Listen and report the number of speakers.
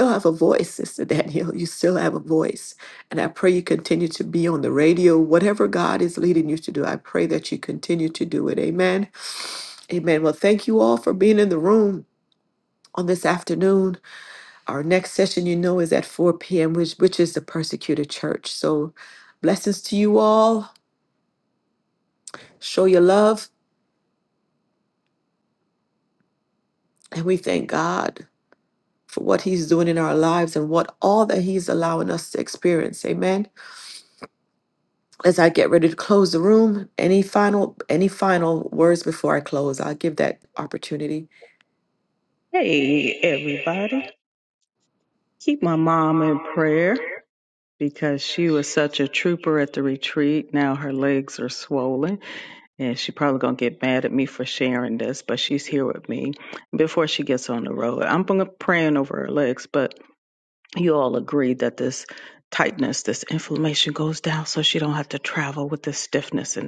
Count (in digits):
2